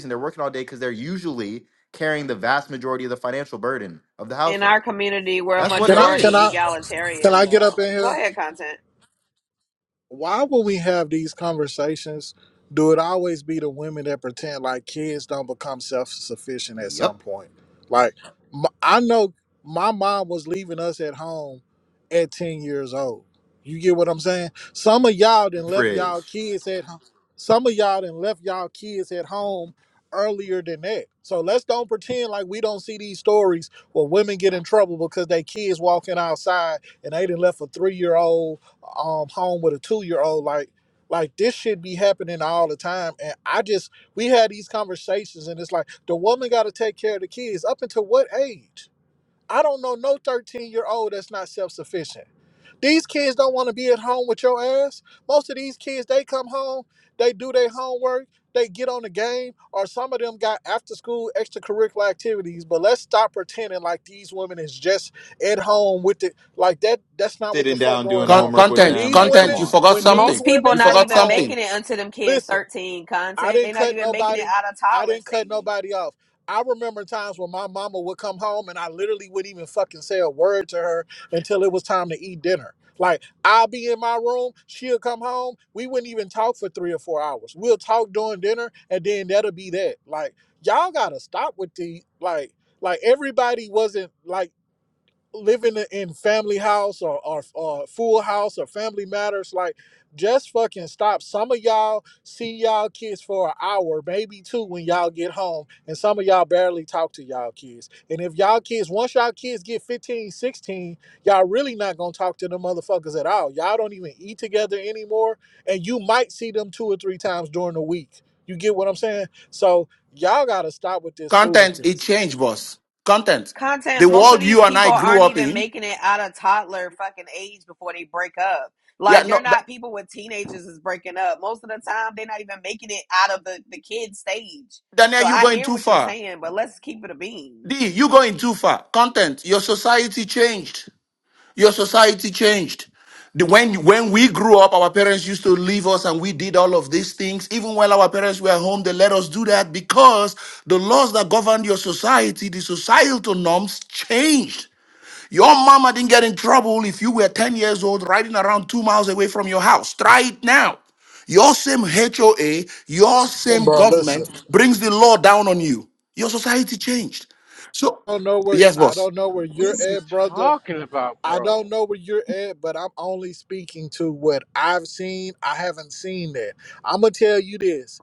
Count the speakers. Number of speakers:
5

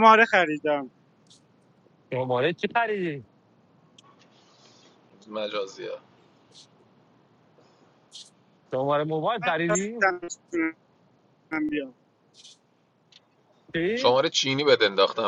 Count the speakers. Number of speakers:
3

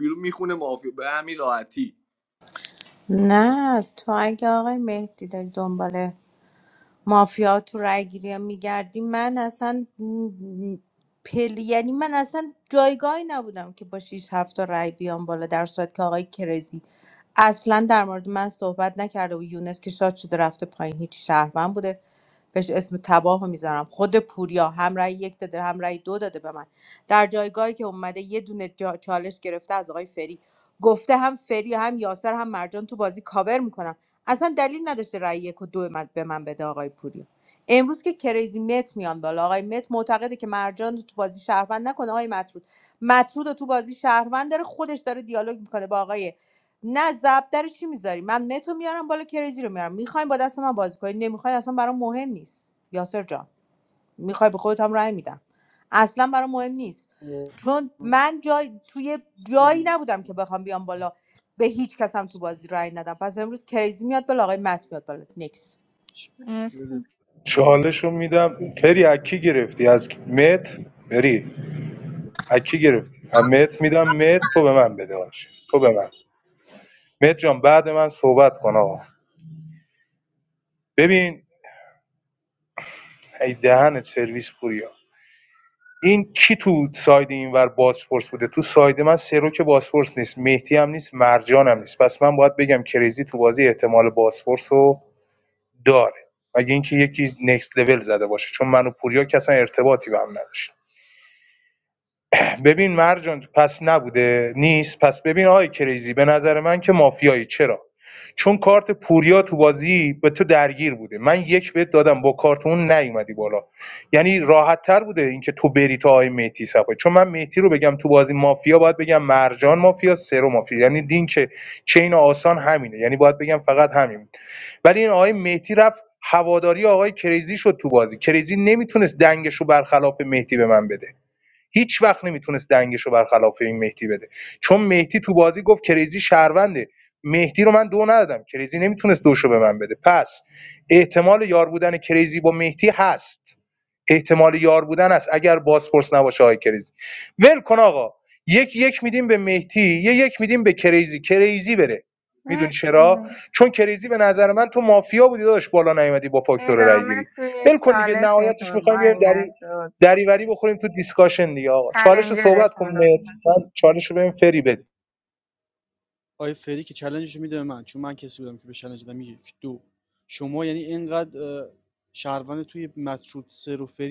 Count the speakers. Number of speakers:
5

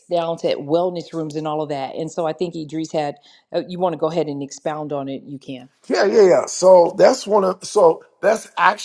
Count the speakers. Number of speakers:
2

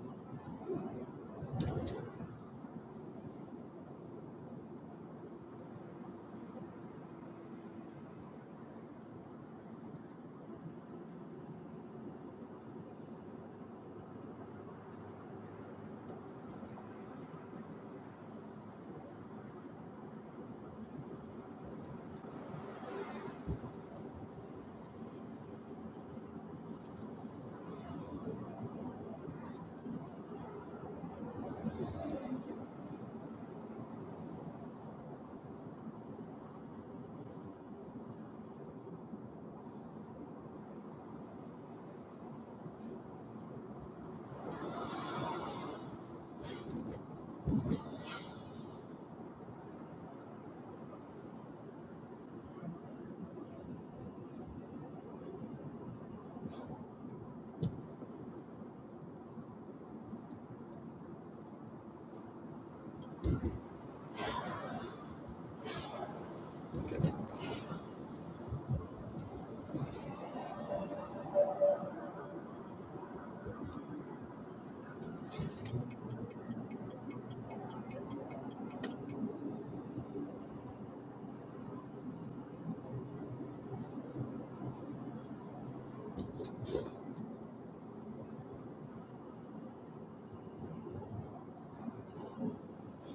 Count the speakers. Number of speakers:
0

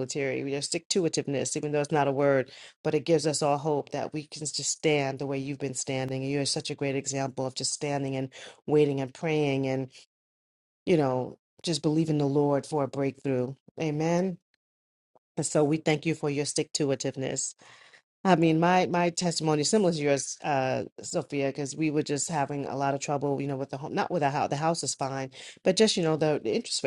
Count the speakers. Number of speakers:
1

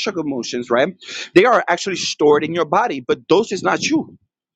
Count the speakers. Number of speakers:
1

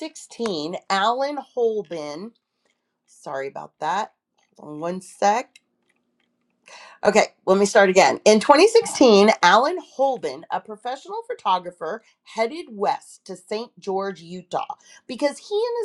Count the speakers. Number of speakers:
1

